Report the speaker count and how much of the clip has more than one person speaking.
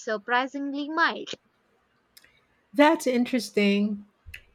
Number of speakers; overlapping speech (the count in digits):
2, no overlap